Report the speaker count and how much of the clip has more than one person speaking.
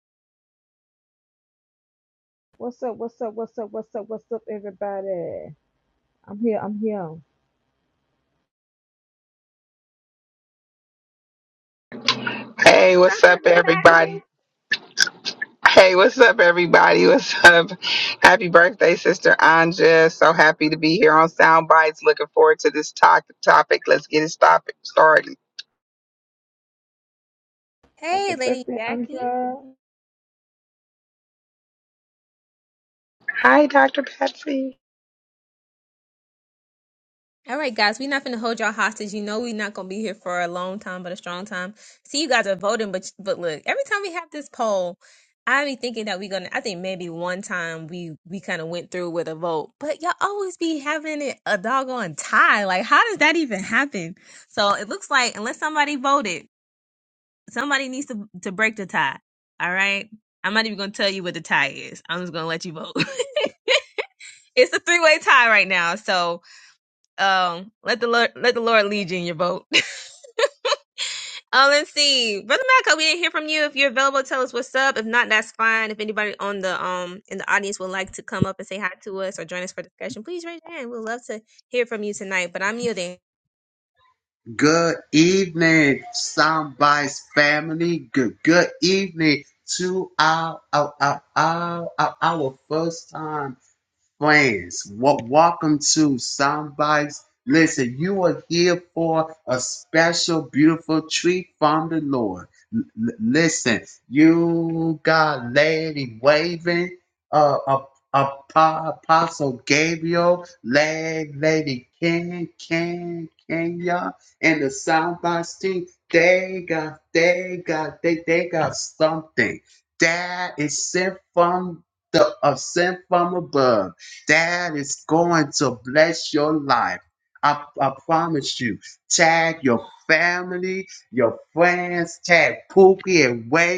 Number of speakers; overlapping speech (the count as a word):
four, about 2%